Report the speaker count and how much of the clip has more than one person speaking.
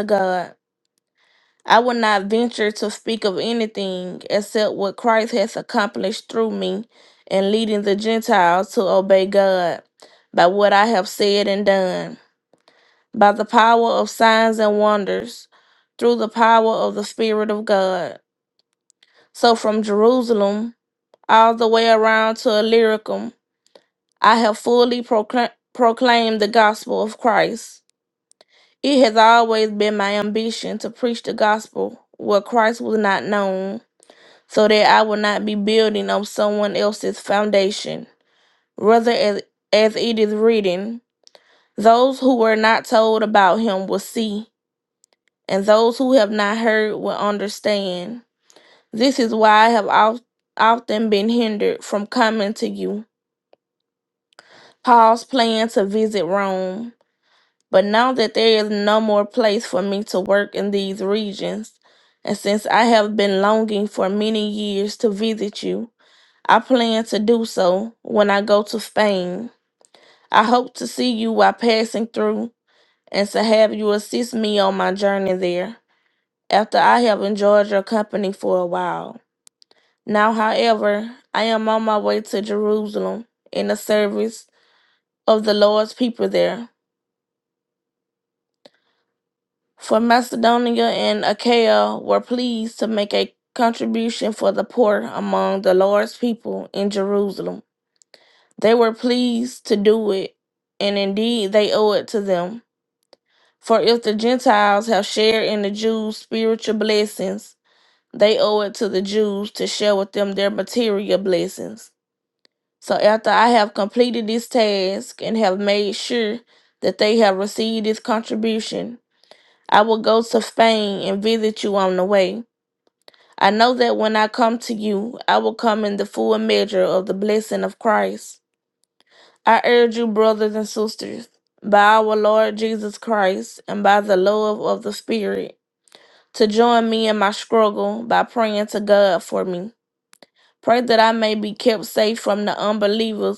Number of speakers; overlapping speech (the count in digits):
1, no overlap